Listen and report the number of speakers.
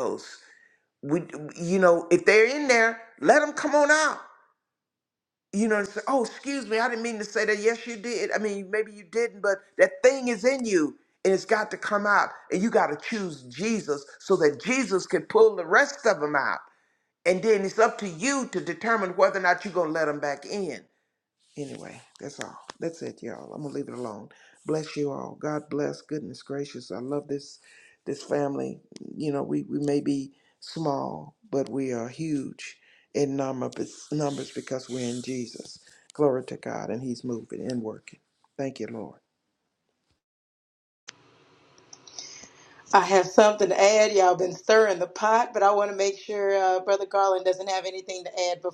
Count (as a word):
two